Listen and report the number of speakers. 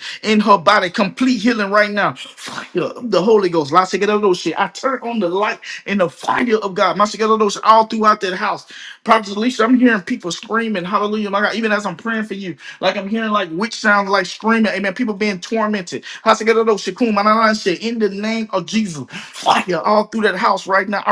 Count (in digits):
1